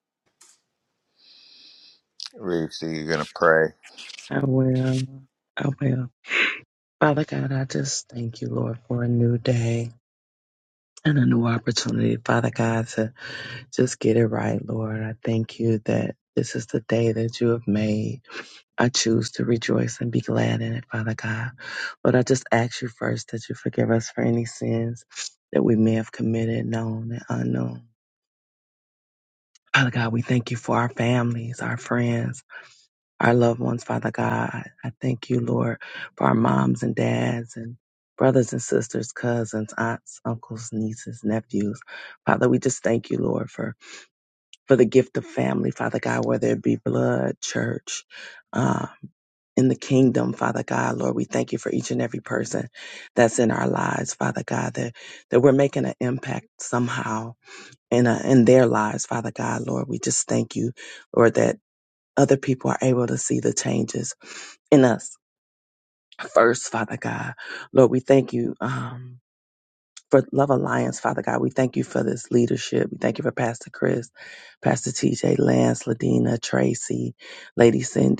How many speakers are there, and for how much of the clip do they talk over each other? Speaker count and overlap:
two, no overlap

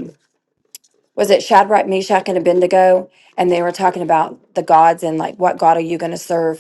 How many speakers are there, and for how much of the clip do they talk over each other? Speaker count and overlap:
one, no overlap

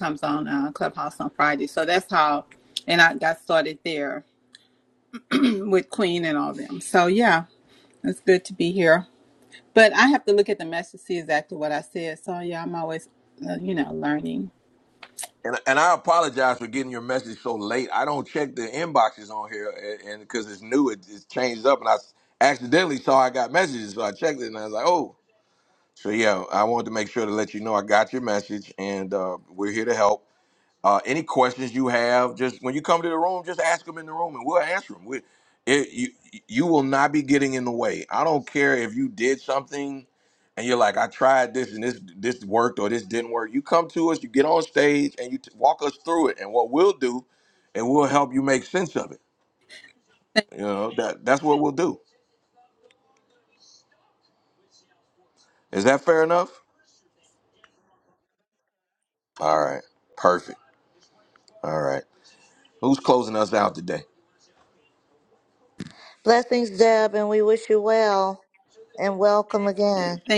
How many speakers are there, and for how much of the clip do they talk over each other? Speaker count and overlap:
three, no overlap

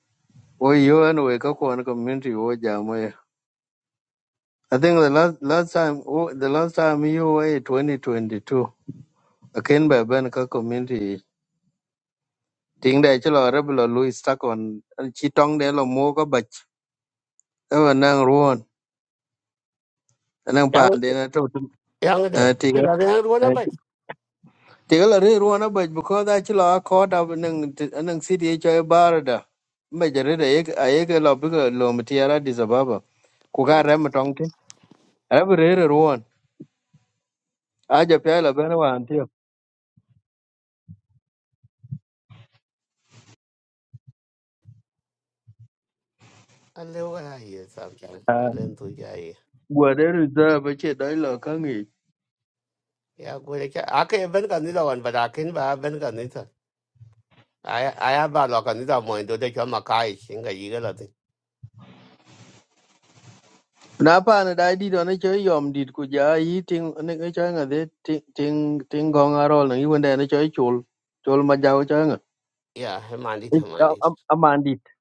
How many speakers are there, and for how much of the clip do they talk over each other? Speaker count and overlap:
two, about 1%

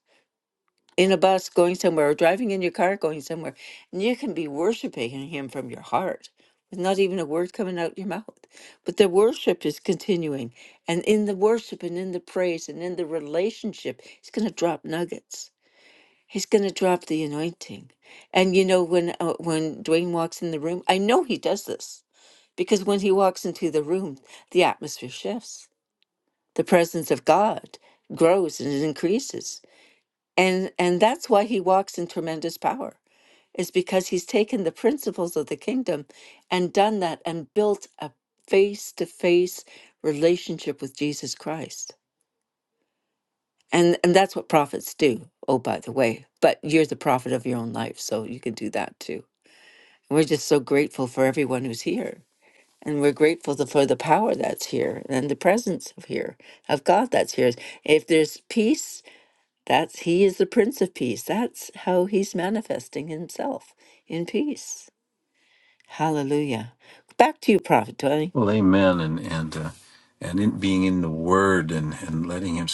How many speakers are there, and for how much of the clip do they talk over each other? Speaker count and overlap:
two, no overlap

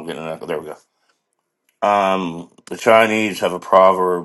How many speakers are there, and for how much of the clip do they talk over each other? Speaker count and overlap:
one, no overlap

